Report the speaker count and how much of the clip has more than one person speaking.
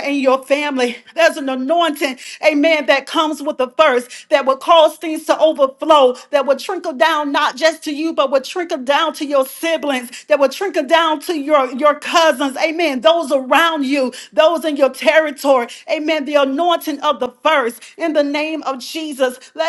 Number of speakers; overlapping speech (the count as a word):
one, no overlap